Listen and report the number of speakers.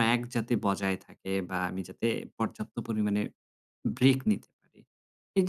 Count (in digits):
1